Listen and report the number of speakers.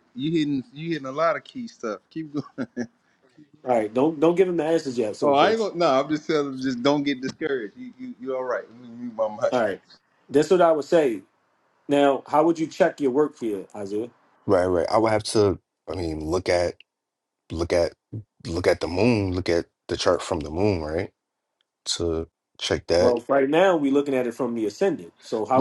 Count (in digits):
3